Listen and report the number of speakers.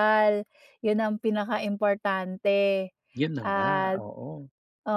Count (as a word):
two